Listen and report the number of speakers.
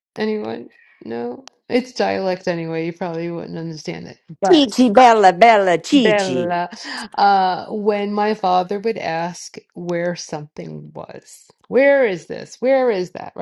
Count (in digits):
2